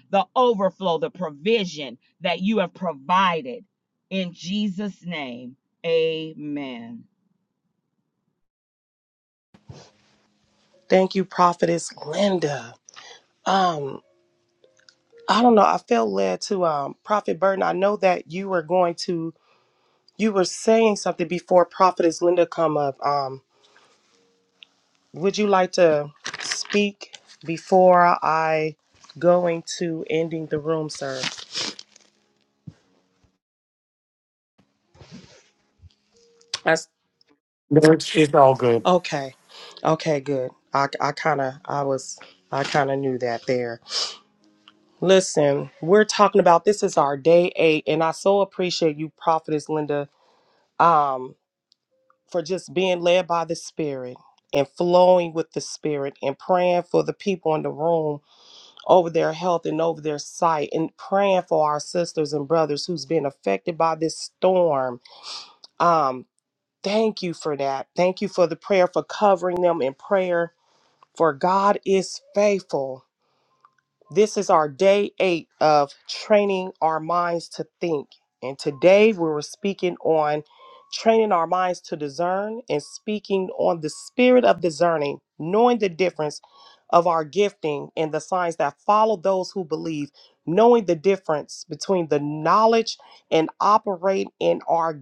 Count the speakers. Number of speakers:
3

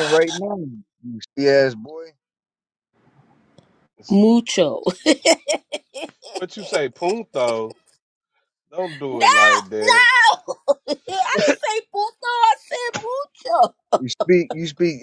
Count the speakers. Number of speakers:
3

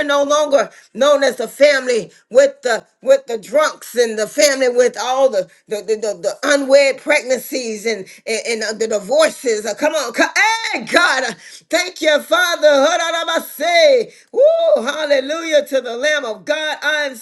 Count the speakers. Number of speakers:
1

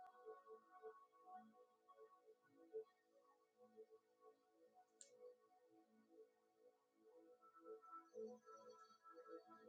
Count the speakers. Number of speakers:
0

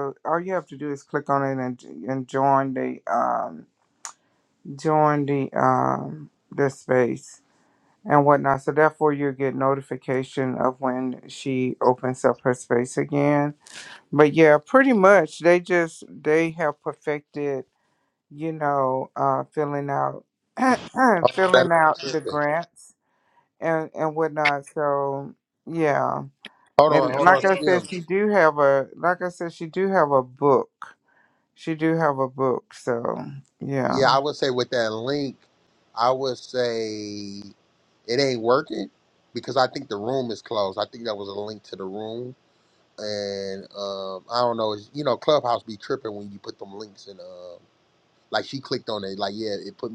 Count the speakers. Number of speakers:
2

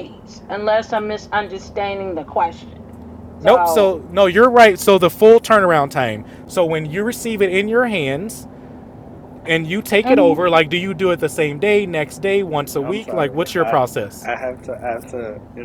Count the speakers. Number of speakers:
3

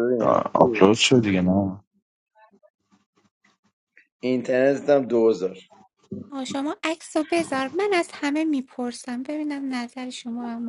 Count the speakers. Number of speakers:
3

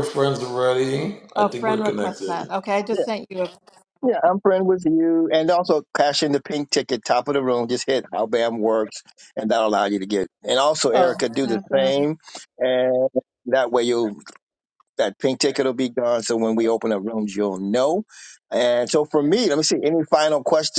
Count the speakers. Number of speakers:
3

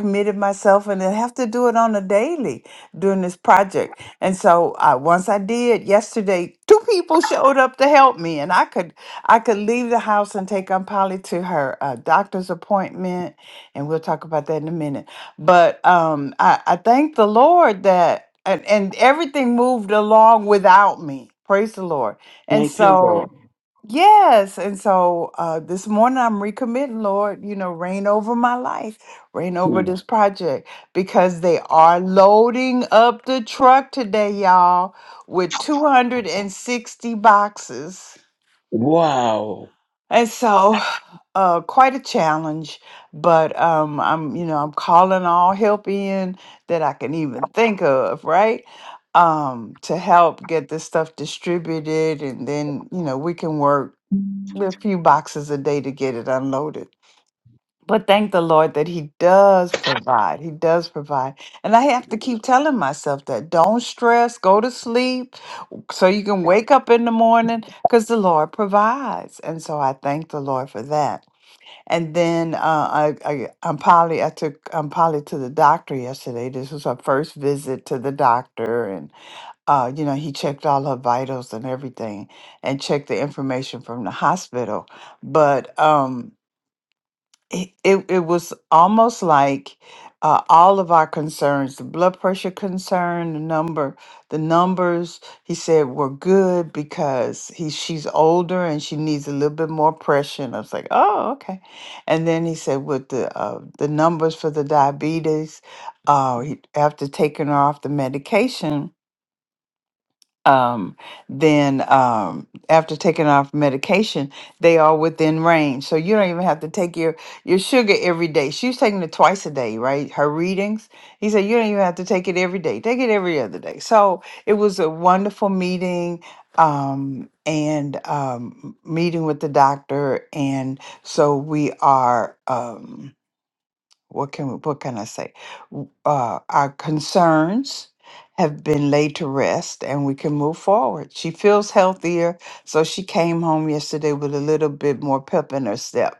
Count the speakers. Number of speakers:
2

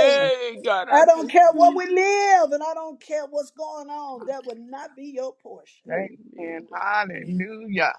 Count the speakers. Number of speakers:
3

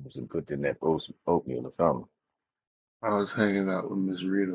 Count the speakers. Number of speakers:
2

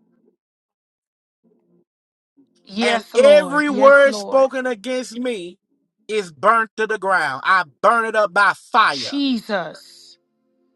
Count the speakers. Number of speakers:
2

